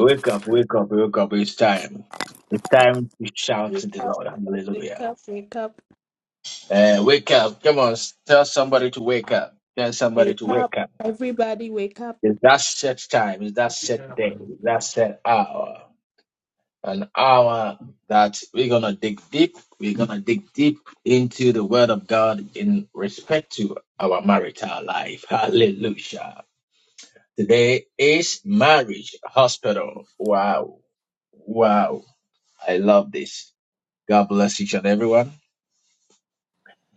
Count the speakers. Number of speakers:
2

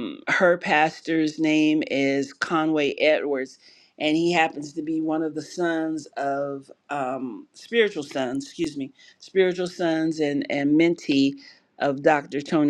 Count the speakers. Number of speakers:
1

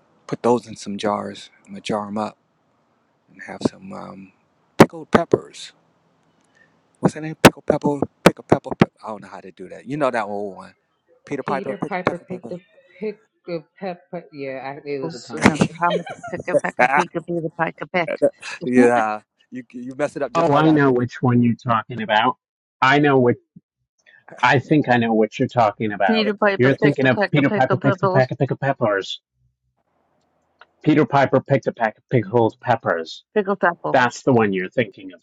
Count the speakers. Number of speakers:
4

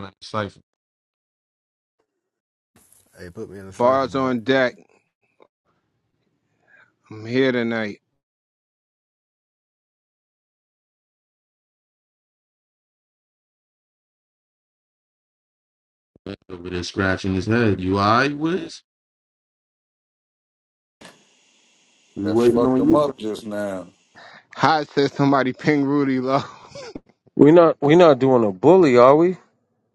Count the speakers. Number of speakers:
5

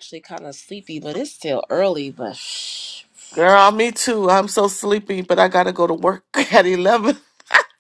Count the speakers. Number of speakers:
2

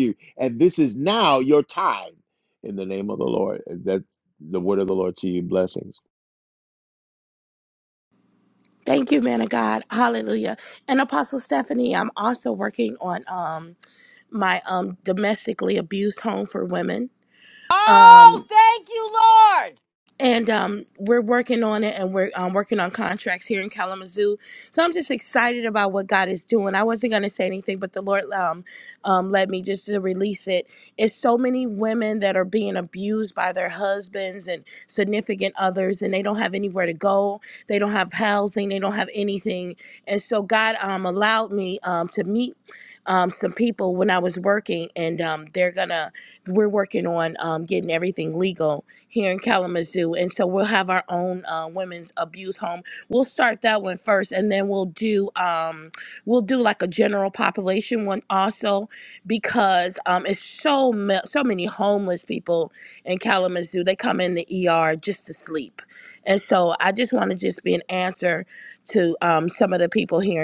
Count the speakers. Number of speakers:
3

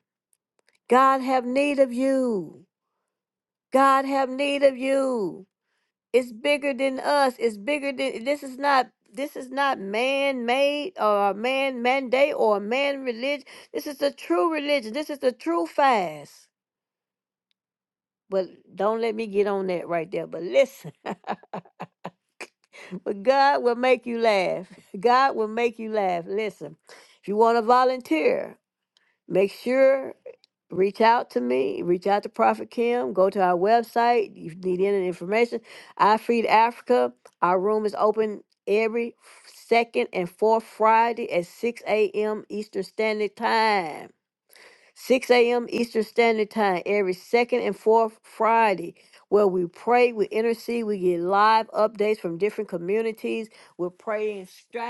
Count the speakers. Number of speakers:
1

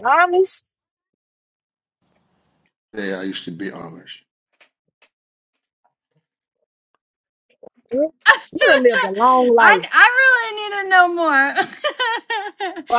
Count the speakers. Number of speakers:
3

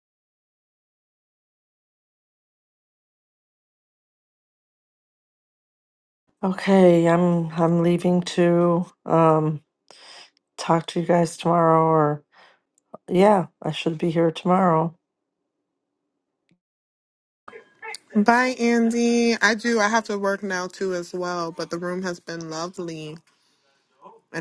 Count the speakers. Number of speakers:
2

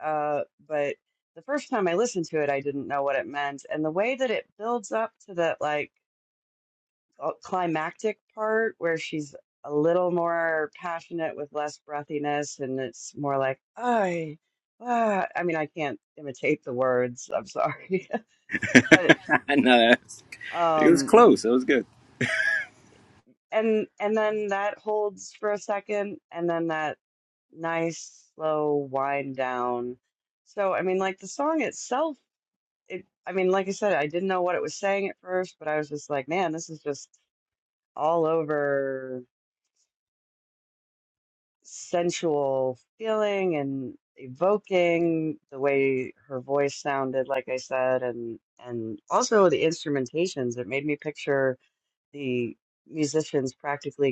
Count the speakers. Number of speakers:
2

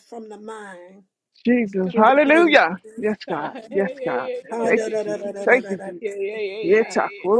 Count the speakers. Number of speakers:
3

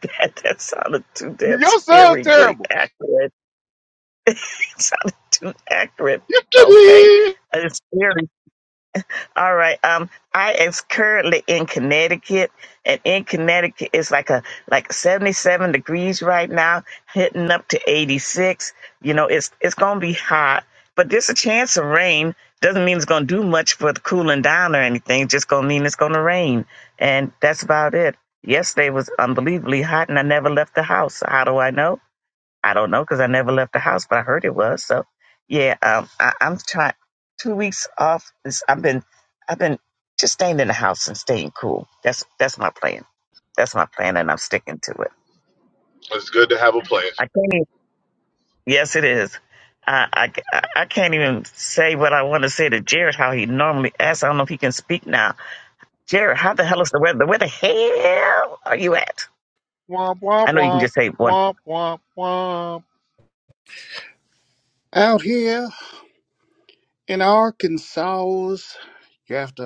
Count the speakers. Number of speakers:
4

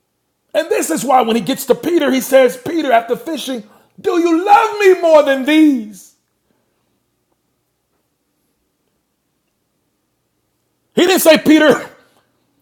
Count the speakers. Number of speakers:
1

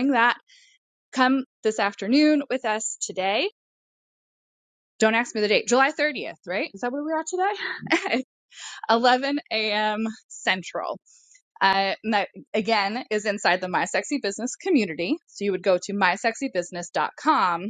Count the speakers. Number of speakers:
1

